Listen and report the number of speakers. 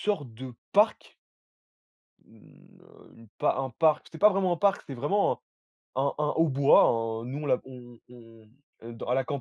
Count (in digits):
1